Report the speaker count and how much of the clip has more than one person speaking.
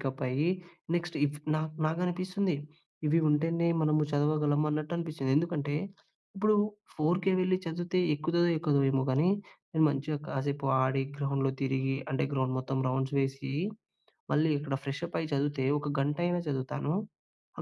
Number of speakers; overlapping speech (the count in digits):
1, no overlap